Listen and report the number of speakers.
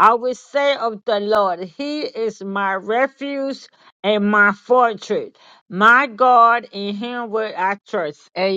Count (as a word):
one